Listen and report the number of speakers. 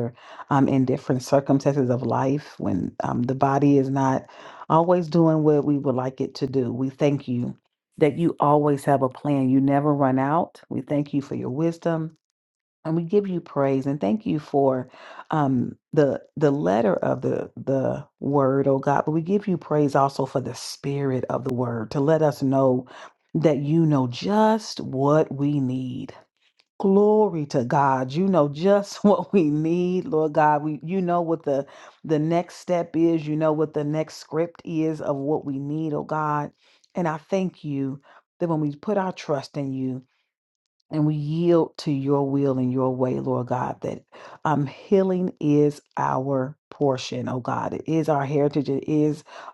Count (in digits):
1